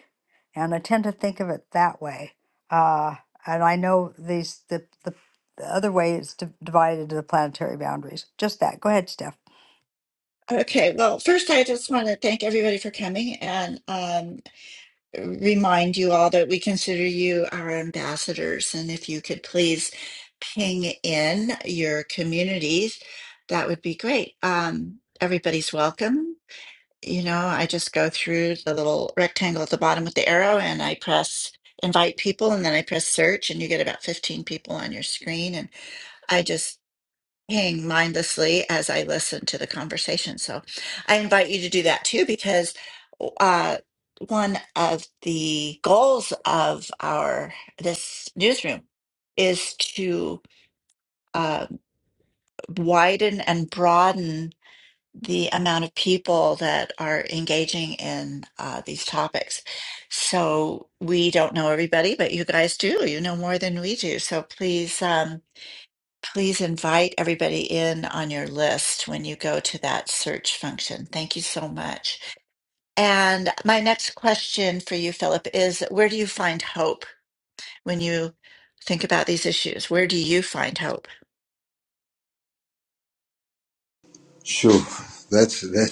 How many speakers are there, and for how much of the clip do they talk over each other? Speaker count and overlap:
3, no overlap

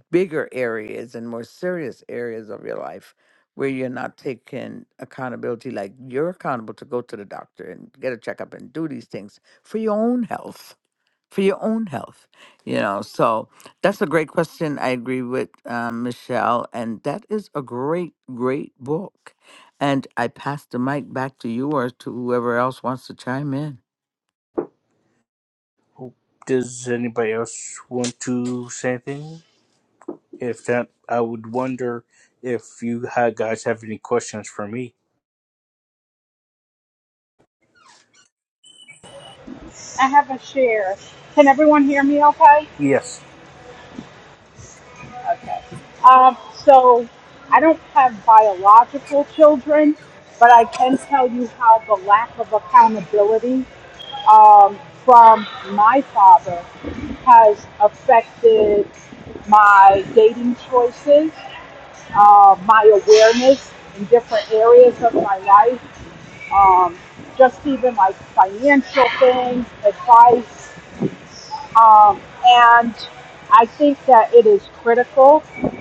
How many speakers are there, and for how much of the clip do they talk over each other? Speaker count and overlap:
3, no overlap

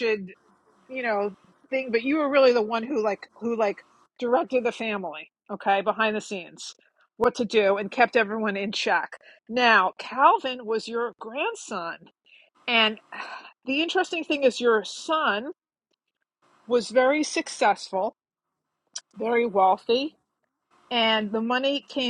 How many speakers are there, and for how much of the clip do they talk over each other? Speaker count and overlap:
1, no overlap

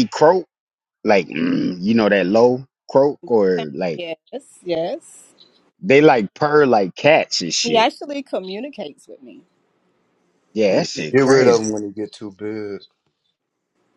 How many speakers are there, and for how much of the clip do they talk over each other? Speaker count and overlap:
3, about 5%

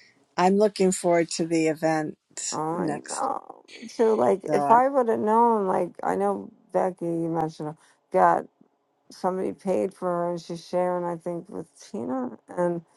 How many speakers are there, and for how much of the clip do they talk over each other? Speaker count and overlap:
2, about 6%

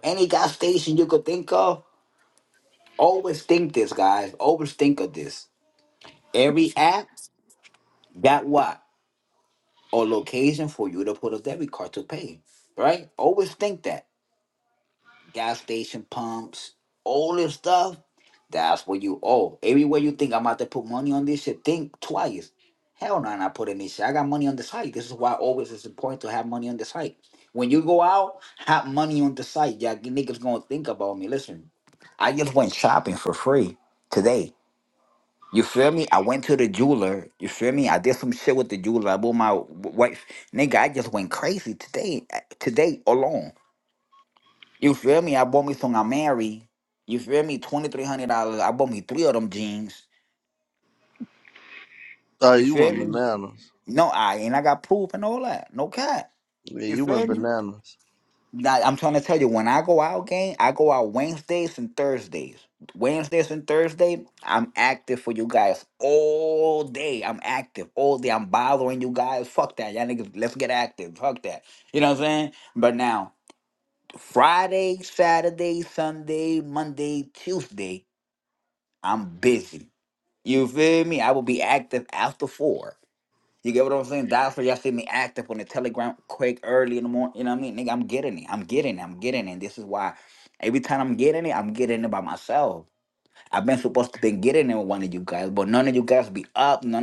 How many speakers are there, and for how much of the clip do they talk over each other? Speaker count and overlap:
2, about 1%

